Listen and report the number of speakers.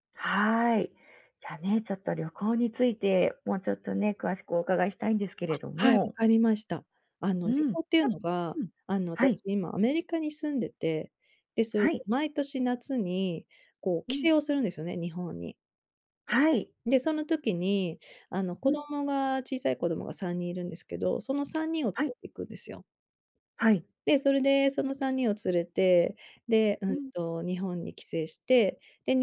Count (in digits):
2